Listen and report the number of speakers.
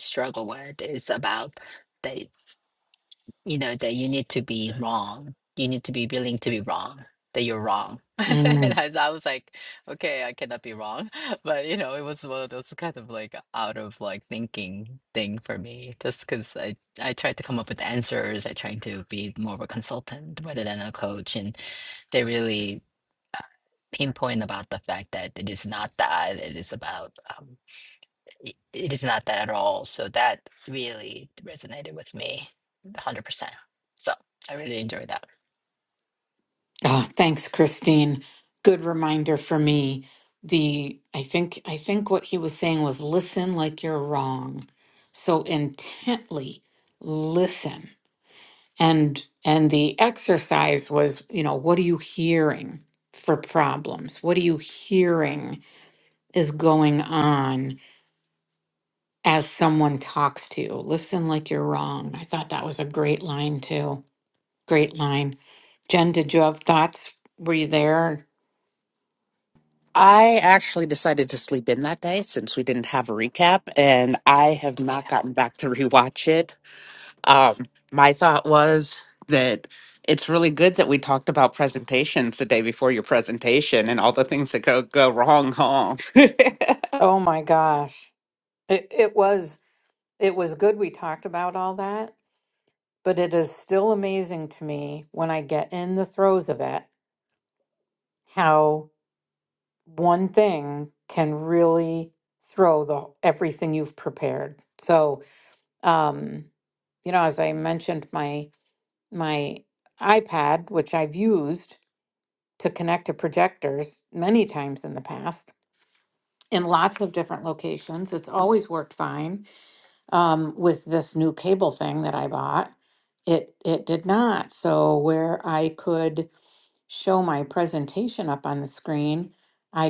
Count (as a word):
three